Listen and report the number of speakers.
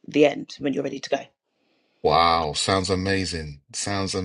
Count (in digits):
2